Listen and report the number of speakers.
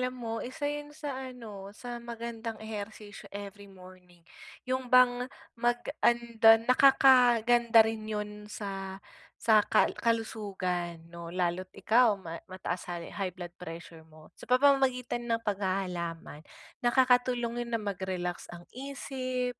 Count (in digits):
1